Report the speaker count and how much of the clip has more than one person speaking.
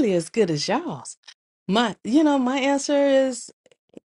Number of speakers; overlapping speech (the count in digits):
1, no overlap